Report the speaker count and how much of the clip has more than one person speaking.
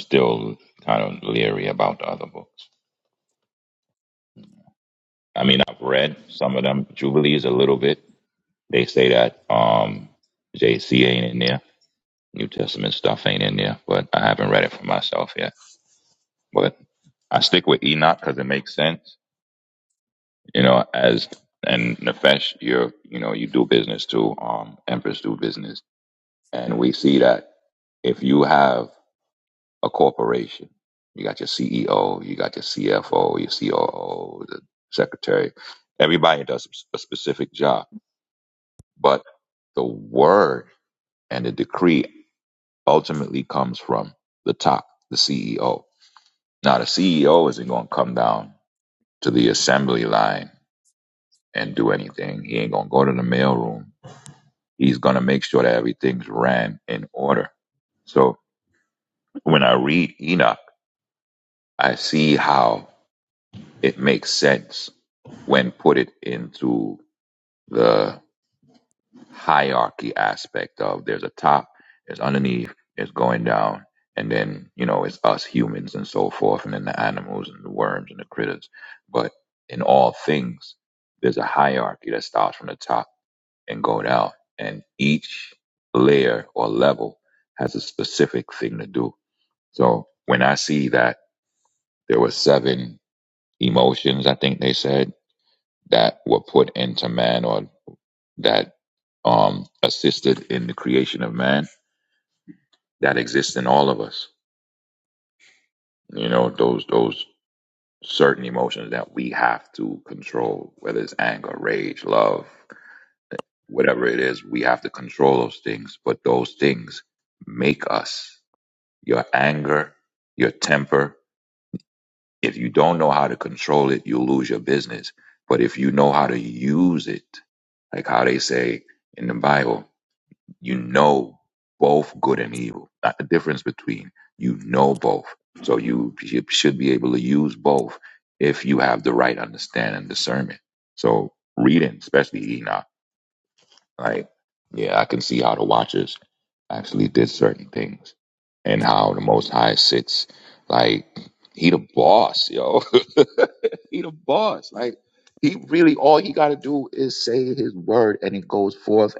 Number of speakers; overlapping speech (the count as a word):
one, no overlap